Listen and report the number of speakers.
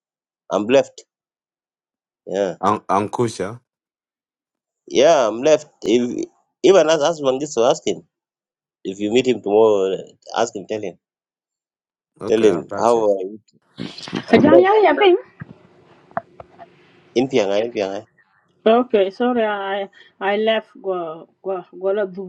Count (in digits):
3